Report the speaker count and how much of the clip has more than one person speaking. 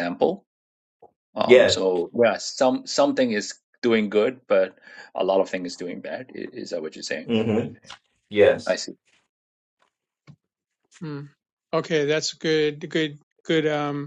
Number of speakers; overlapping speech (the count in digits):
3, about 2%